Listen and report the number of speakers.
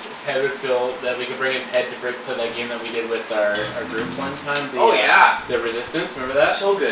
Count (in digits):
2